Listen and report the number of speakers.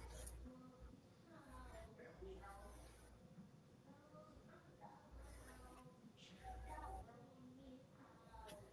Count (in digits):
0